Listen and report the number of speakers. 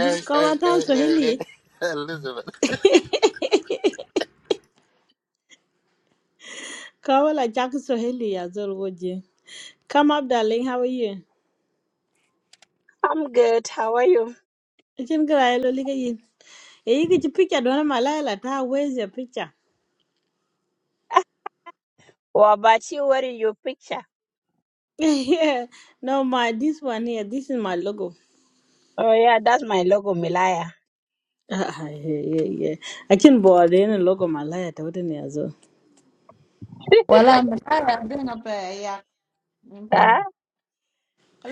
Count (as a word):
four